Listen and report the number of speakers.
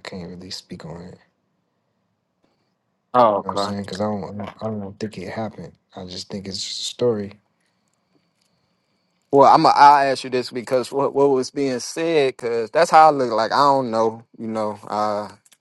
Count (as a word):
two